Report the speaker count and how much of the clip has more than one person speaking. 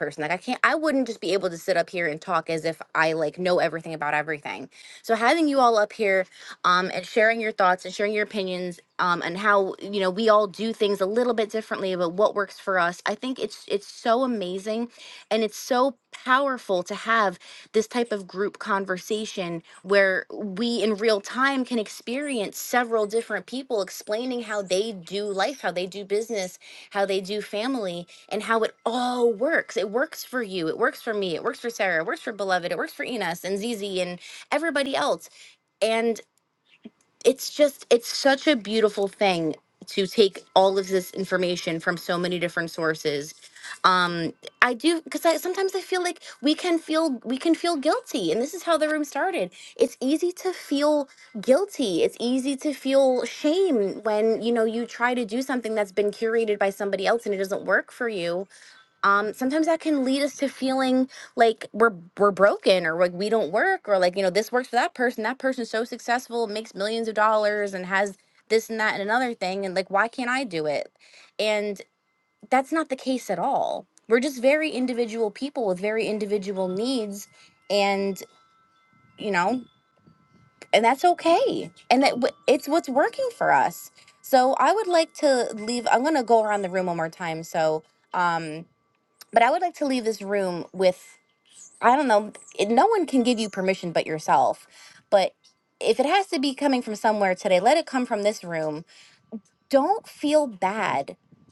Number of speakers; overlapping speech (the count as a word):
one, no overlap